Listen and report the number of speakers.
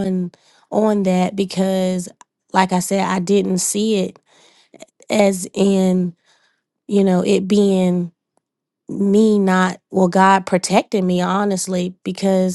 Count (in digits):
1